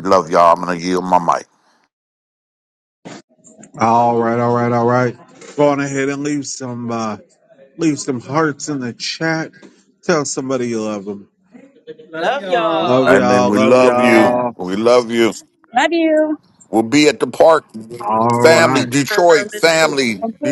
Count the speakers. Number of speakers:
3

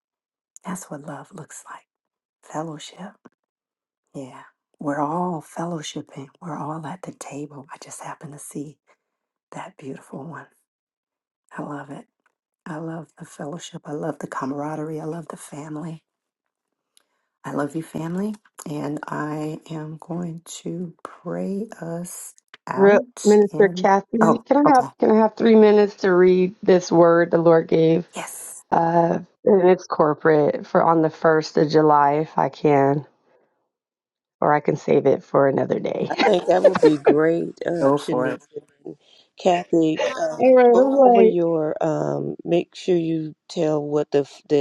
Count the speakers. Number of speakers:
3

